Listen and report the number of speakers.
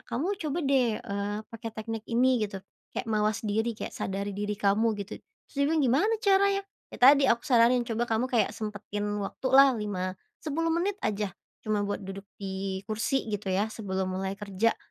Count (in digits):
1